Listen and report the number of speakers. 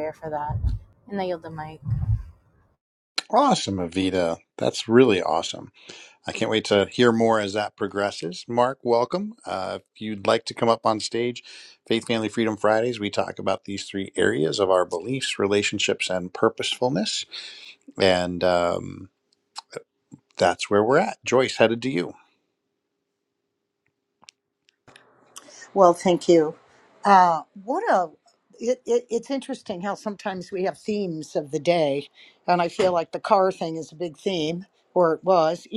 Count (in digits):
3